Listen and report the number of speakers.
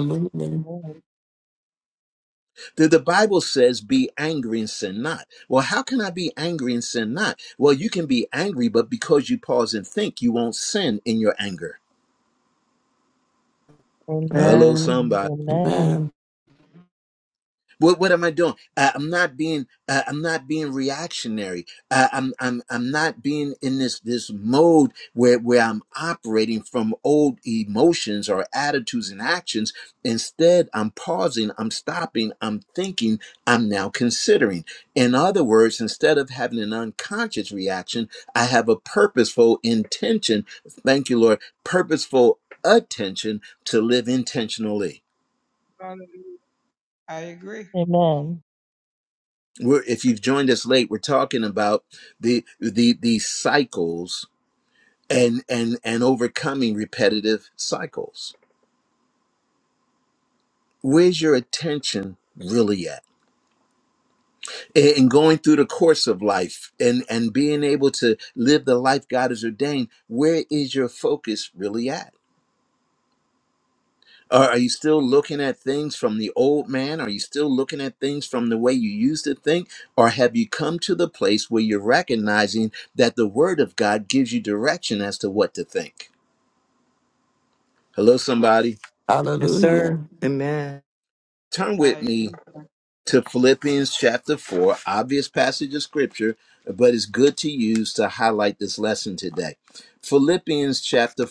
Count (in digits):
5